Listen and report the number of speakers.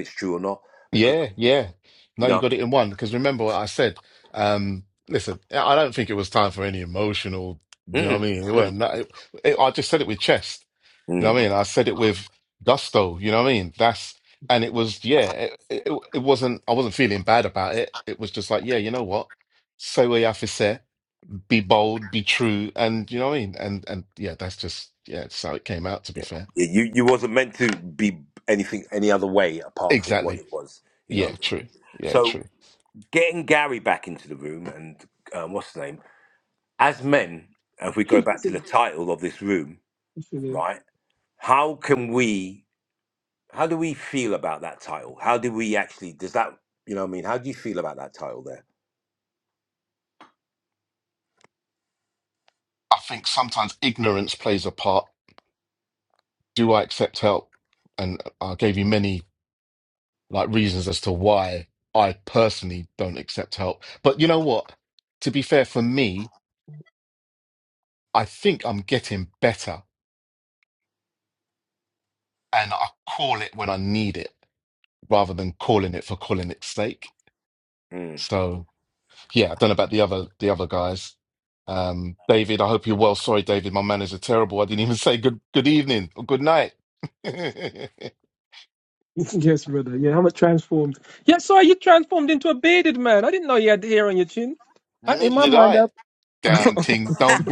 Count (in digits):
3